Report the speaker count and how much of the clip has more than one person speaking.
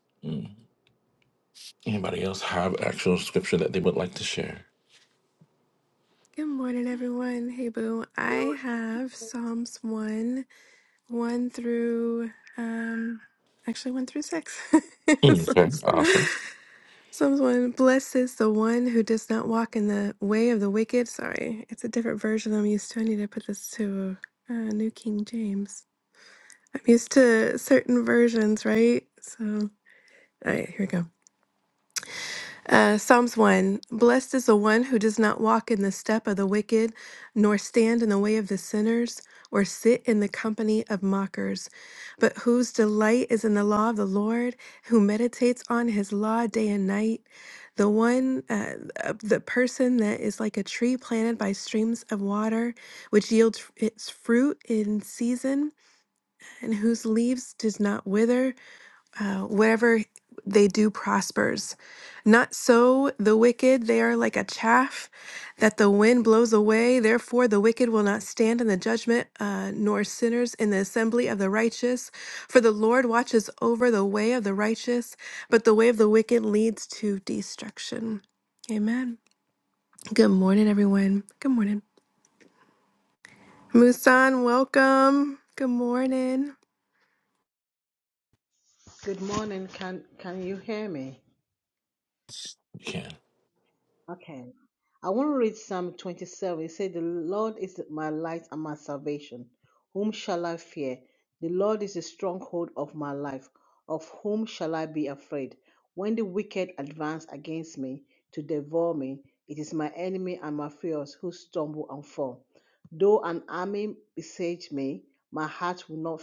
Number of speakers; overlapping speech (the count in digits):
3, under 1%